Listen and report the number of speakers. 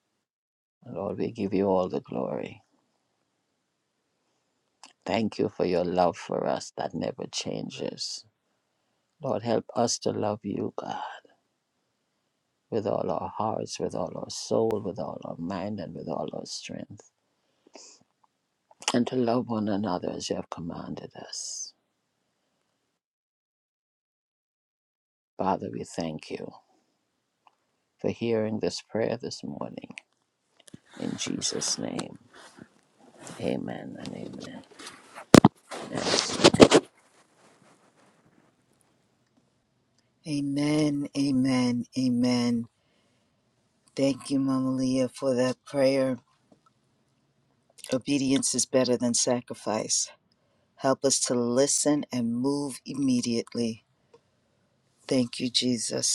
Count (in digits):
2